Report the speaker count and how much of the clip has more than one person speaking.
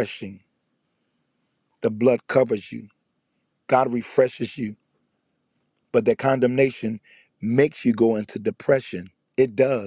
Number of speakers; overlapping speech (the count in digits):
1, no overlap